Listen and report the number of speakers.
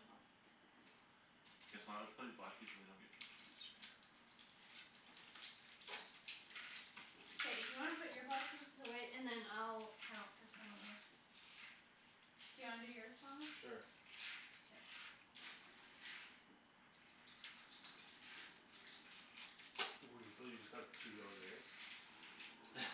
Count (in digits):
3